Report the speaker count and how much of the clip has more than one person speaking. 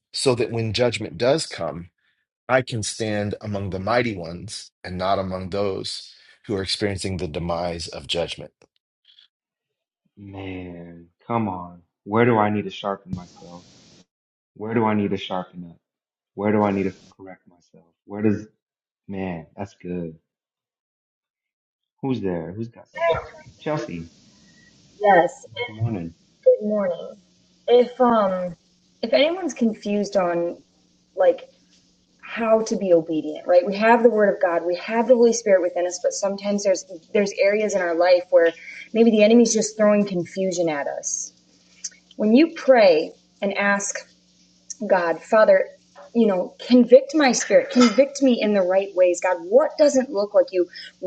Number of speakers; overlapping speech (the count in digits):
3, no overlap